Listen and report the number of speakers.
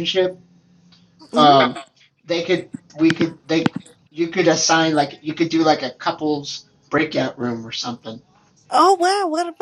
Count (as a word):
two